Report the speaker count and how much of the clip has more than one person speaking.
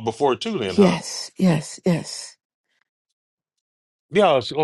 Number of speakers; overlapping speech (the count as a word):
two, about 6%